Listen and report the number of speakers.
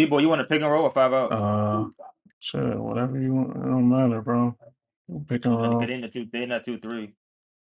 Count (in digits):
2